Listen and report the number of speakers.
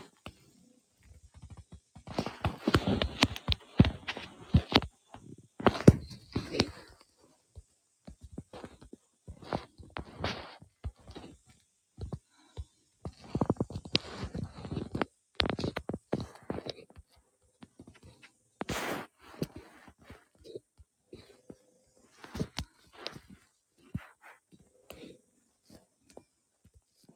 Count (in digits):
0